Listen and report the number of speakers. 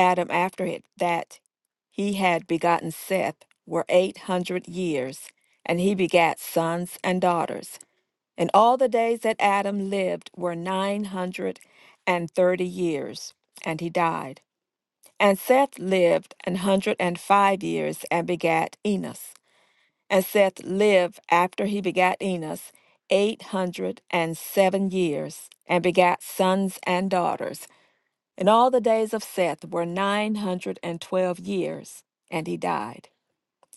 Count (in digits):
1